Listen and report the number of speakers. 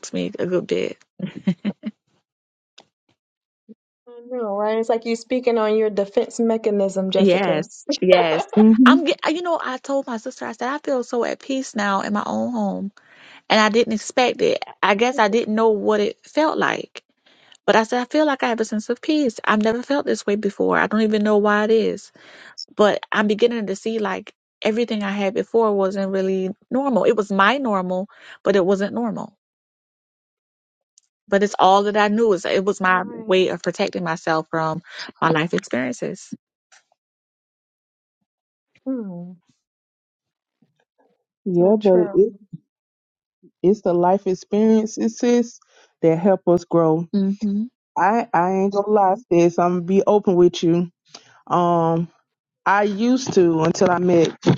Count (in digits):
3